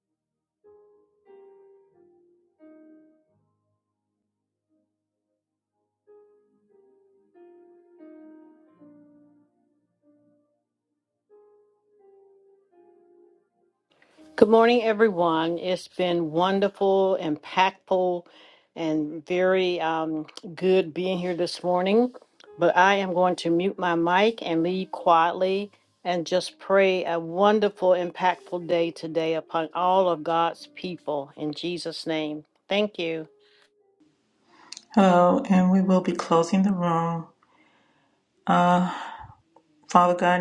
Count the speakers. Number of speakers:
2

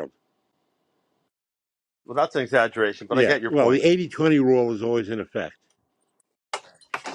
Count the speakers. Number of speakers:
2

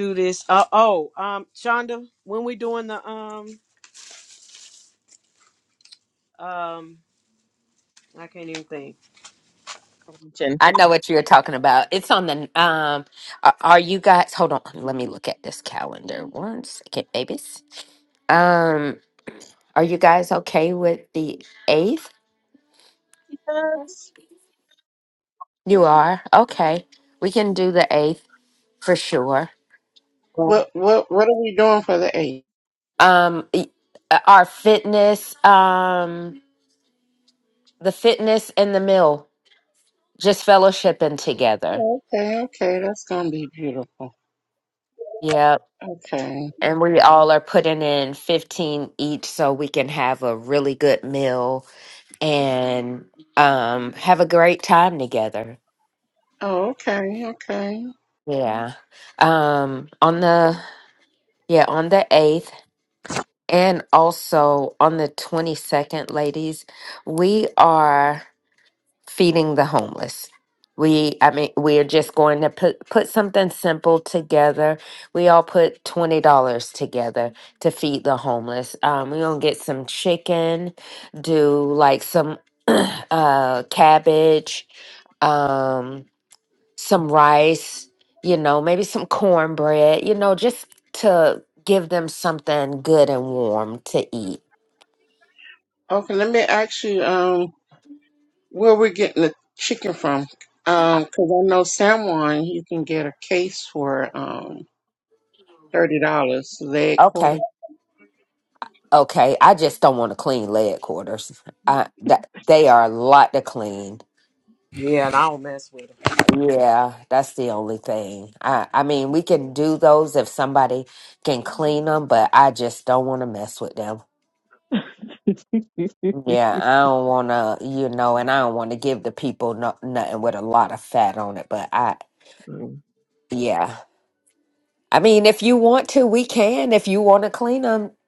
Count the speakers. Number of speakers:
4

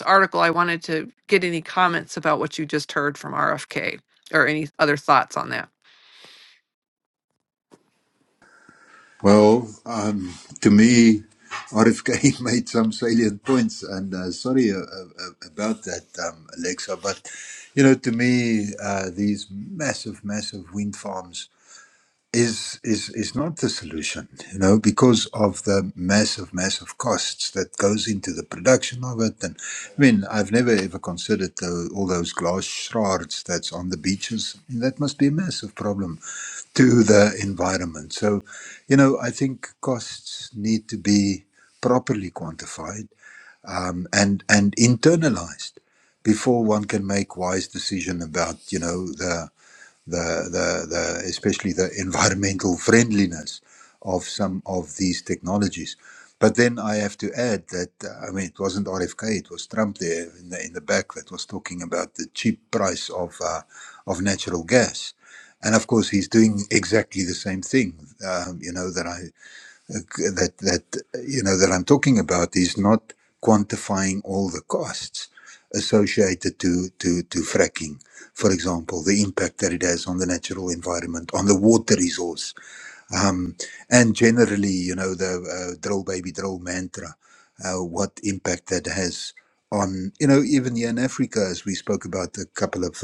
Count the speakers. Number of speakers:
2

